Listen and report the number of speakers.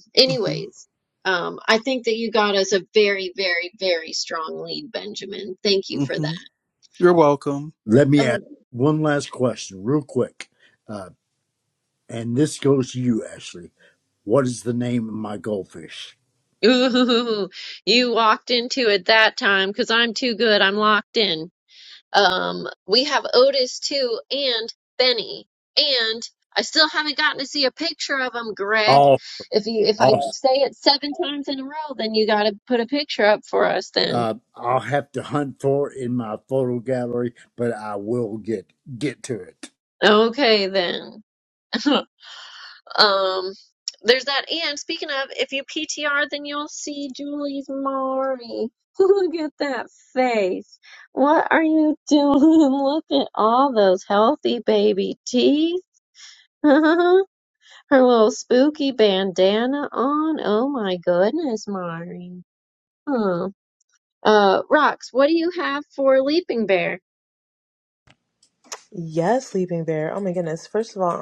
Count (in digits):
4